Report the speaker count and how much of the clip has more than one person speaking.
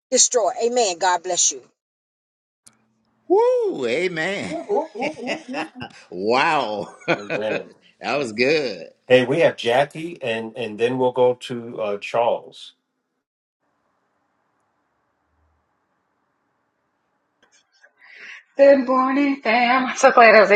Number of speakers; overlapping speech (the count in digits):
4, about 2%